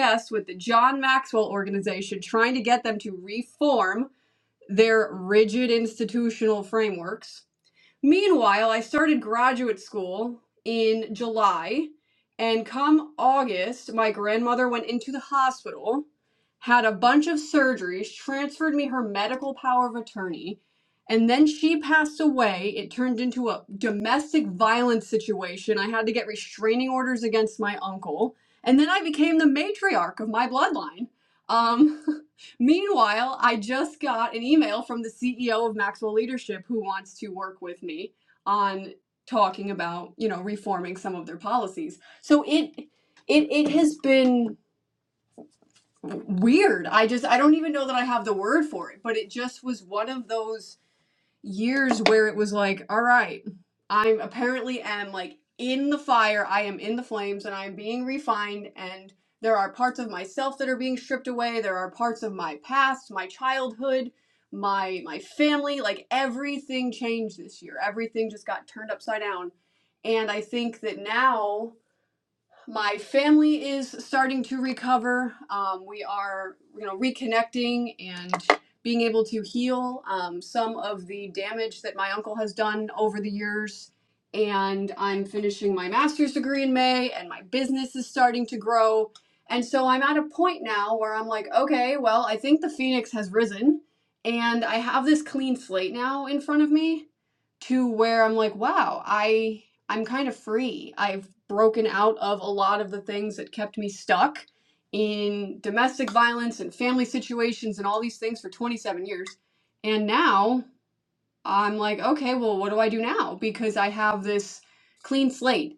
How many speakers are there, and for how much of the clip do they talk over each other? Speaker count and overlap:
one, no overlap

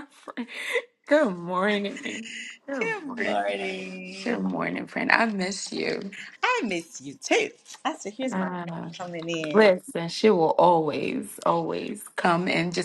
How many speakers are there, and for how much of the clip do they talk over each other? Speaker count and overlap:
two, about 7%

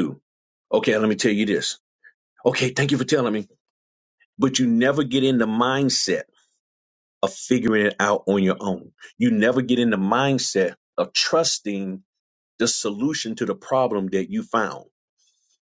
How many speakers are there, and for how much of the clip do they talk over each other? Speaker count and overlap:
one, no overlap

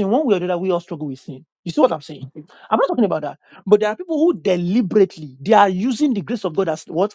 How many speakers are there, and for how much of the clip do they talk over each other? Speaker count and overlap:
one, no overlap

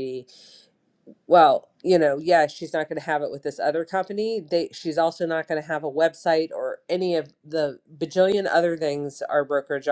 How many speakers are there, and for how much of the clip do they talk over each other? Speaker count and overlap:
one, no overlap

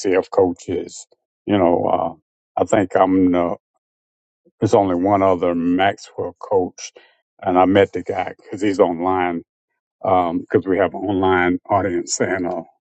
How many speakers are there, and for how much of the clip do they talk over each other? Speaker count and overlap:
one, no overlap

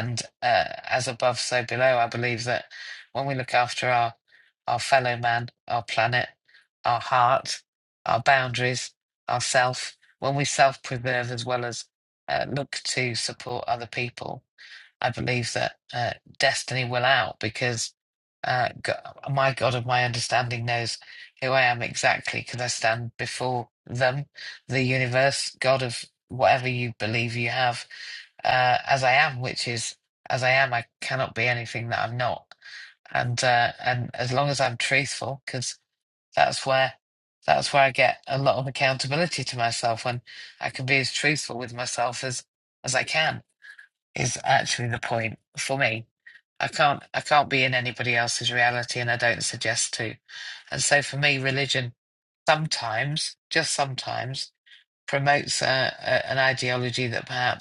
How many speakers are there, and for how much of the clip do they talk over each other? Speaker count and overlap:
one, no overlap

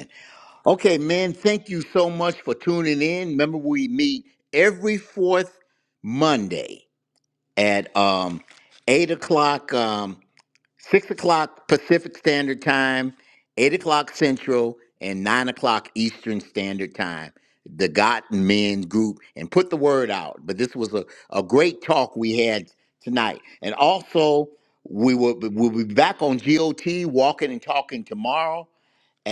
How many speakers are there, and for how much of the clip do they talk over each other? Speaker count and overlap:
one, no overlap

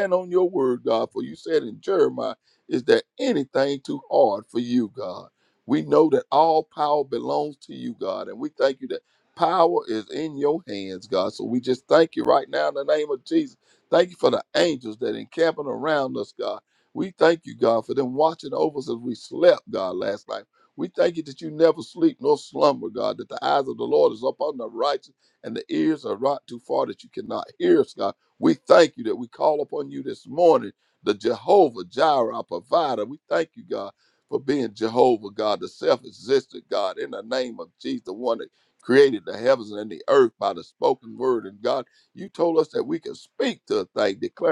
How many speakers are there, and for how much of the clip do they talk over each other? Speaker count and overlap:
one, no overlap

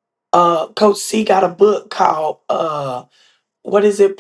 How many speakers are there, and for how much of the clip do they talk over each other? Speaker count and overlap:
one, no overlap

